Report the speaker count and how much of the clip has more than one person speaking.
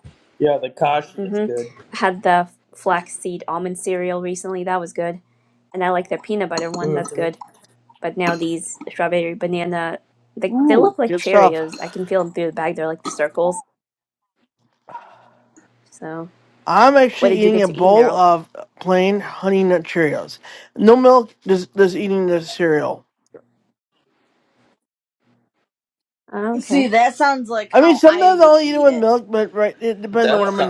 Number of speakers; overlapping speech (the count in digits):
4, about 17%